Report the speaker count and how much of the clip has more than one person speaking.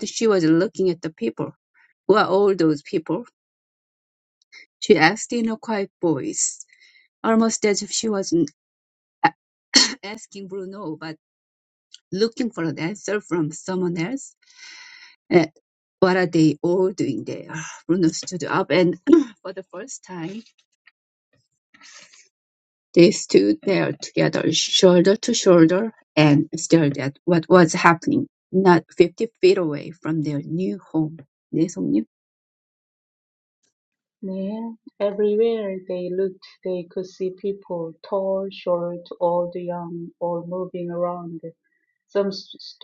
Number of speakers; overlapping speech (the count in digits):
2, no overlap